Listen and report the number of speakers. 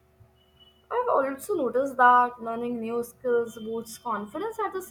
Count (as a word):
one